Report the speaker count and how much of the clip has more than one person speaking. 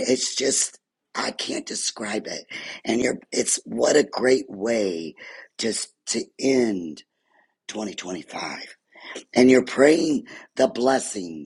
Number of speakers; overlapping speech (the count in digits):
1, no overlap